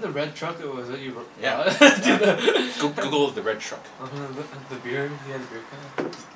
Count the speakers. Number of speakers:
2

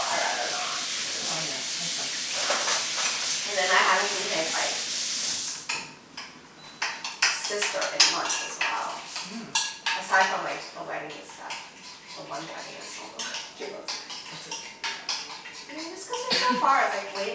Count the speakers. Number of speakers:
2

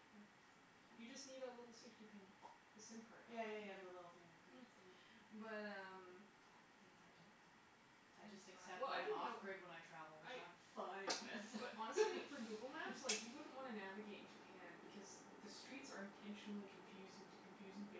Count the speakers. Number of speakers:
2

